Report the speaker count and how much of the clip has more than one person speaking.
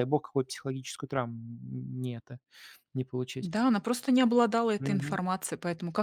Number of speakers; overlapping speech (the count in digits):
2, about 6%